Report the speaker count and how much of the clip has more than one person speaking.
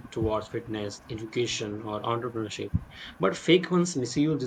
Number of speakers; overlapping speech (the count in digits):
1, no overlap